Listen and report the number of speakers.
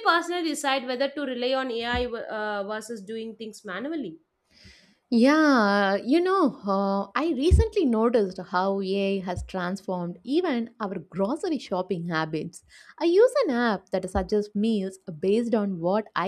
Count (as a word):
two